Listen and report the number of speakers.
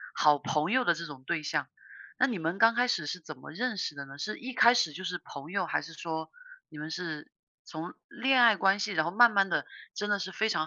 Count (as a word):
one